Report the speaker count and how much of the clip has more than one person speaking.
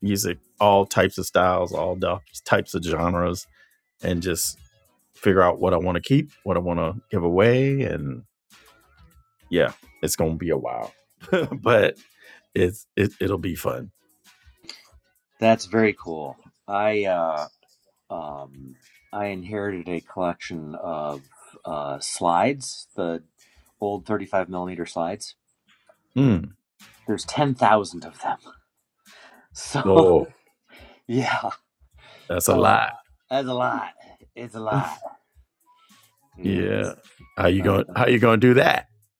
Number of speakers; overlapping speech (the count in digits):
2, about 3%